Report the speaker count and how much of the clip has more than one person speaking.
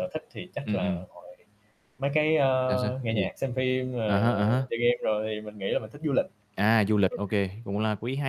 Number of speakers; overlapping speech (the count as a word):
two, about 11%